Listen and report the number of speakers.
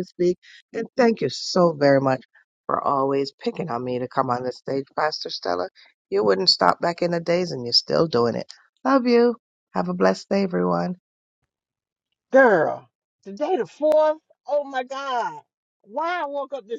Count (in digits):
2